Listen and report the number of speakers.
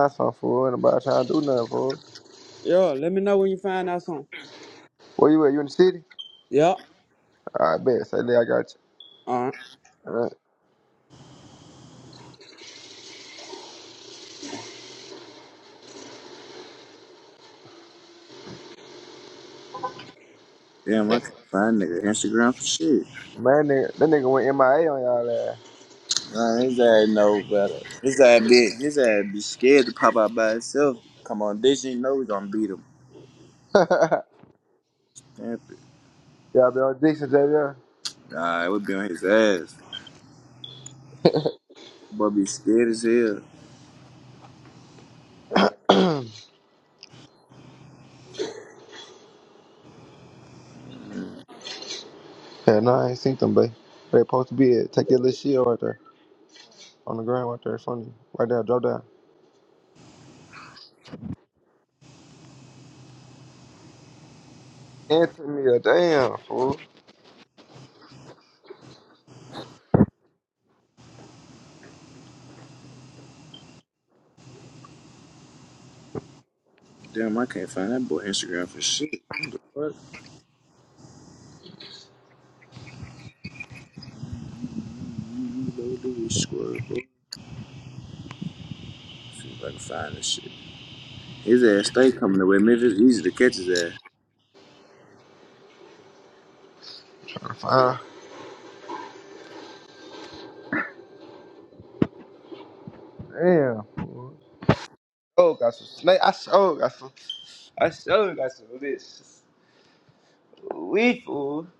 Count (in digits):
3